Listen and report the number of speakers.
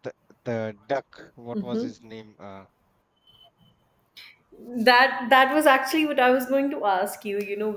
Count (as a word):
two